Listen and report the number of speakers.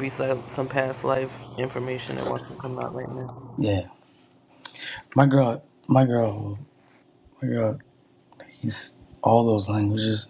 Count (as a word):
two